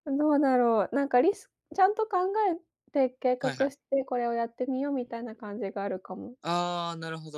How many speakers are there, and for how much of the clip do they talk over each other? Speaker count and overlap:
2, about 4%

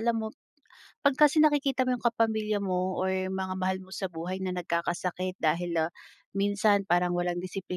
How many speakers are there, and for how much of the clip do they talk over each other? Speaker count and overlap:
1, no overlap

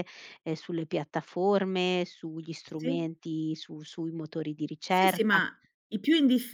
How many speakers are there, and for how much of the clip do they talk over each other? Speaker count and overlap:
2, about 9%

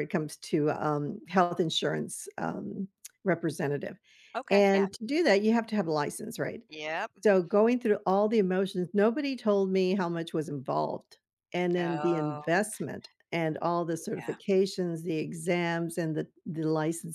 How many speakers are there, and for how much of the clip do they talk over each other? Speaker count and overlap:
2, about 9%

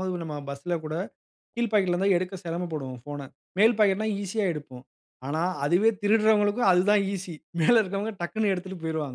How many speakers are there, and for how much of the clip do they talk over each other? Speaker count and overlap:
1, no overlap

